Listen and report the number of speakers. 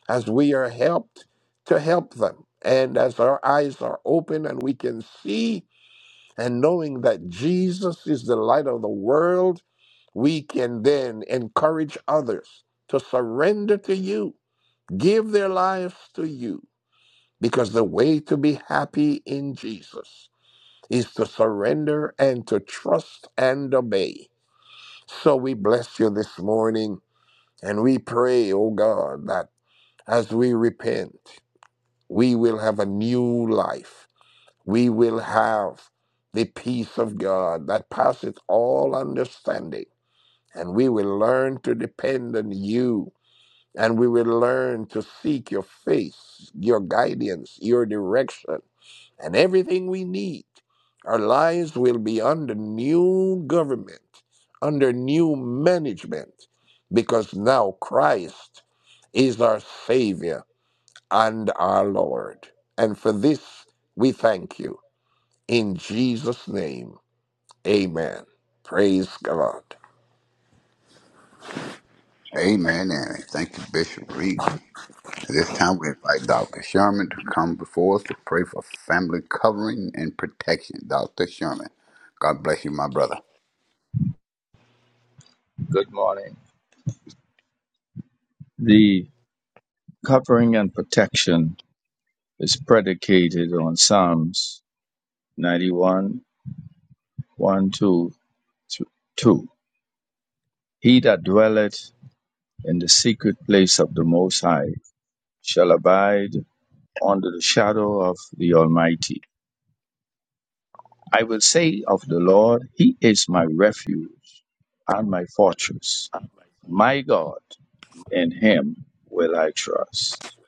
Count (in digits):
3